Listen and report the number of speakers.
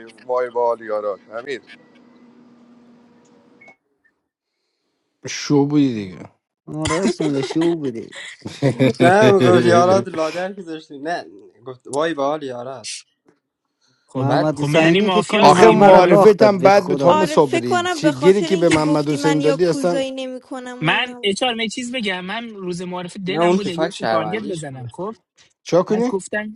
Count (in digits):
6